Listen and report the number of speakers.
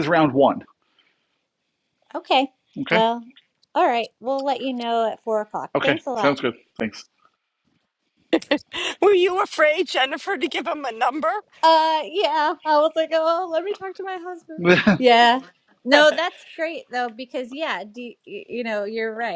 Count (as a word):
three